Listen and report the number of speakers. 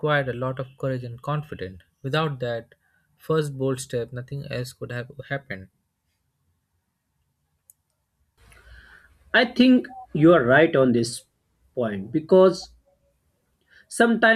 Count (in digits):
2